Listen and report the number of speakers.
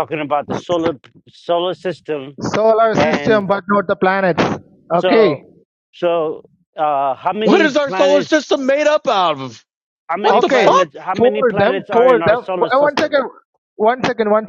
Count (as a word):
three